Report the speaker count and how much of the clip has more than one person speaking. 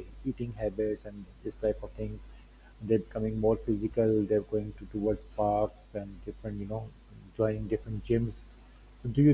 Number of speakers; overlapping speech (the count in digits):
1, no overlap